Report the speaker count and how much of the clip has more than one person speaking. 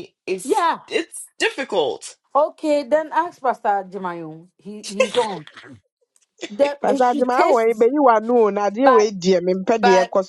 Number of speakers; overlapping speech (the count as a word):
three, about 16%